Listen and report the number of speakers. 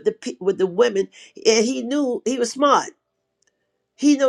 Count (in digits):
1